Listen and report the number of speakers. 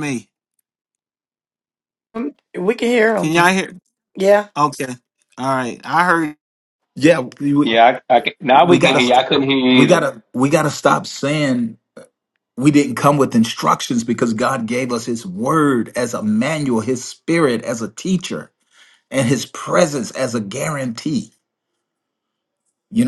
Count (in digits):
4